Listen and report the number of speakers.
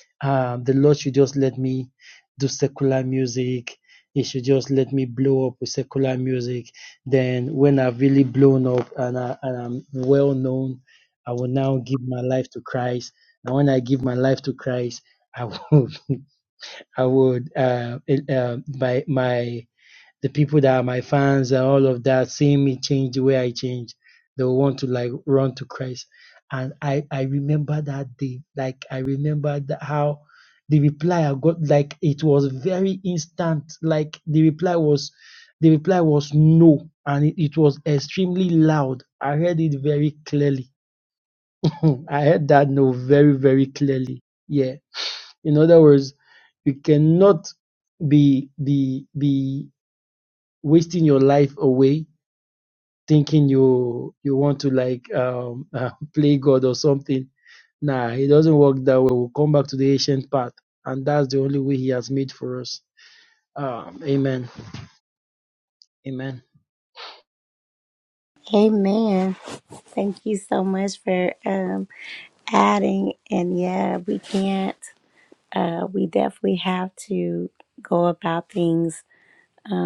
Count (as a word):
two